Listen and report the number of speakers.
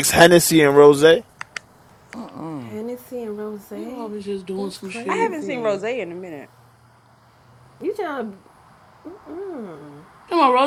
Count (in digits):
4